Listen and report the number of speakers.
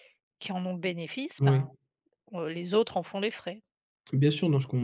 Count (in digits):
2